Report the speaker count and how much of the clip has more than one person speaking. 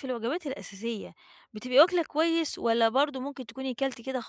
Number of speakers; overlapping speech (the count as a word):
one, no overlap